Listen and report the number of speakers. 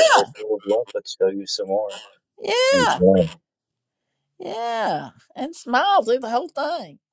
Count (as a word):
two